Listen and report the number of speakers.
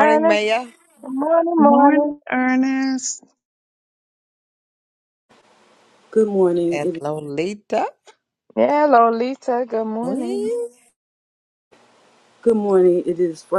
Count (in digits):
4